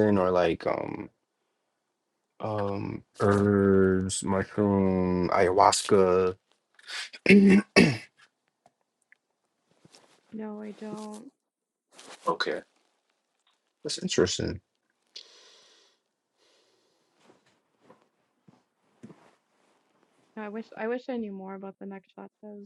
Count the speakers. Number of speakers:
2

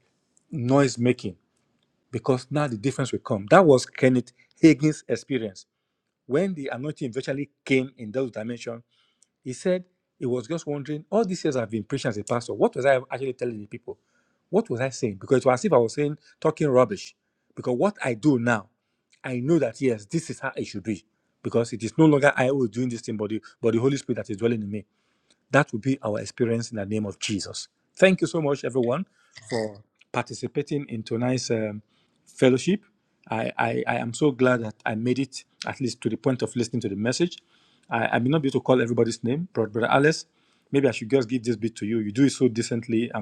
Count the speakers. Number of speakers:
1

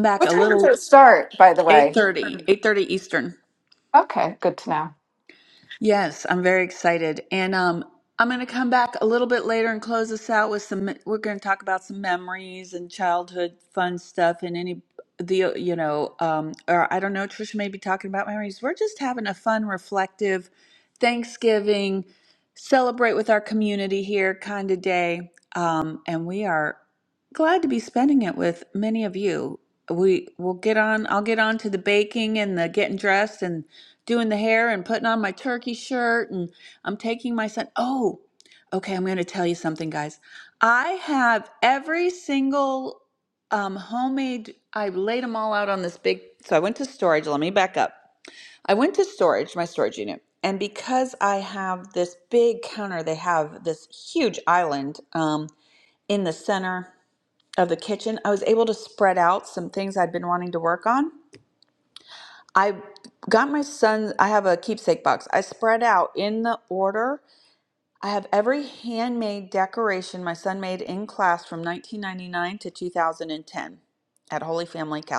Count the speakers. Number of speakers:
2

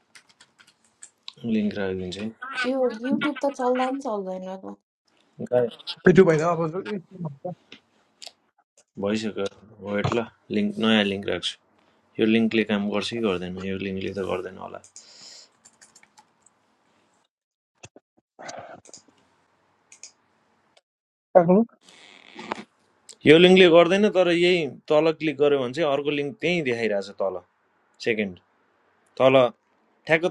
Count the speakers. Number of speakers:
3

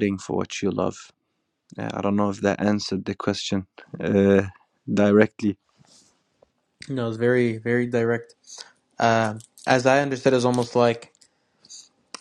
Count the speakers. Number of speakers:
2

